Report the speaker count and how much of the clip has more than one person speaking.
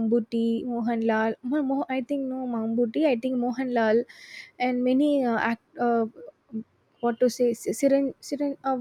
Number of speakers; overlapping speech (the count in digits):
1, no overlap